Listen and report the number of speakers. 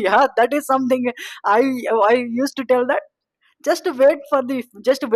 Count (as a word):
one